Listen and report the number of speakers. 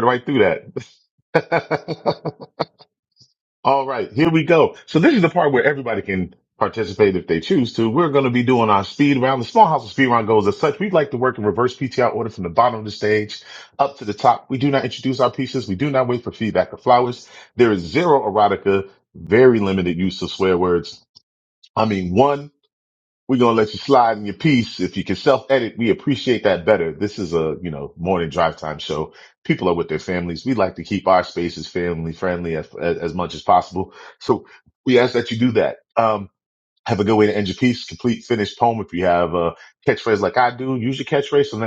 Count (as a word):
one